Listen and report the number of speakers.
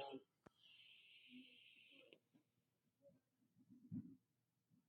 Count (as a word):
zero